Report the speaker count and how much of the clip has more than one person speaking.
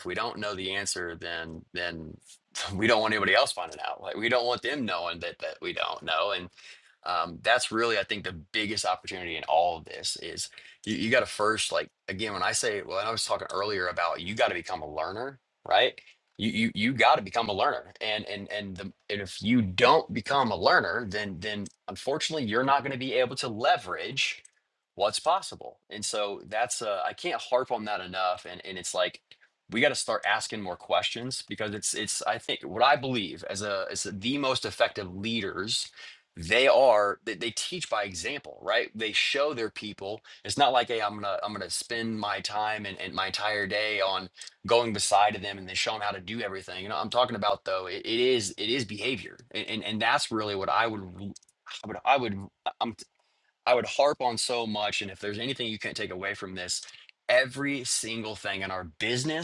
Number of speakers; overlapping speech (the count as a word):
one, no overlap